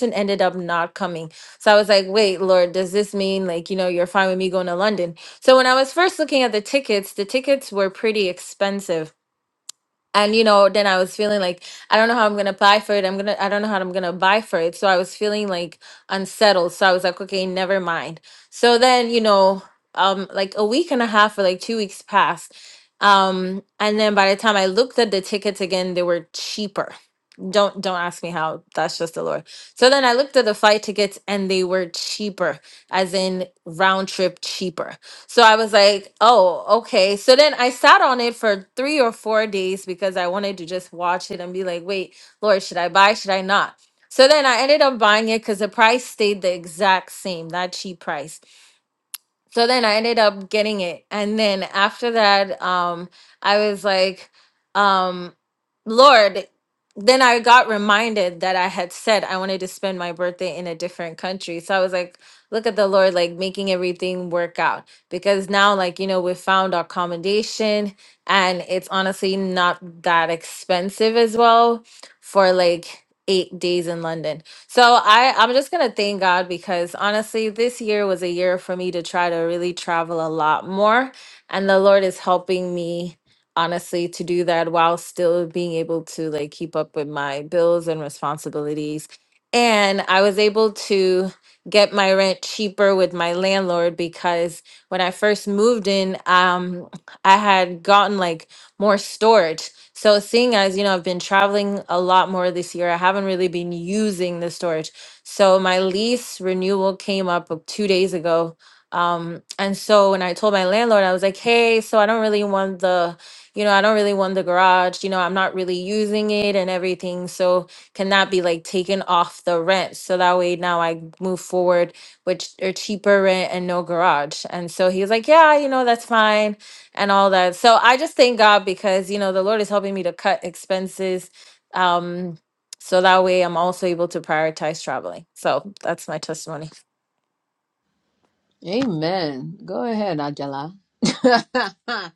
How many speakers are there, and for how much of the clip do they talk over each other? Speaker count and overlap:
2, no overlap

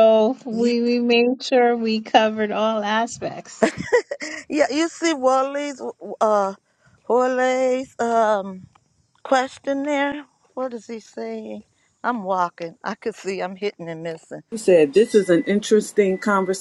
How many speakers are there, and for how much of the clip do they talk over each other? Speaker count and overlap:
3, about 1%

